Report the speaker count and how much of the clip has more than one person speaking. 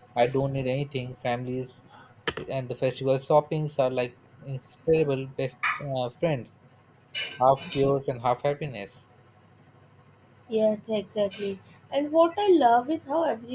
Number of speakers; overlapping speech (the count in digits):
2, no overlap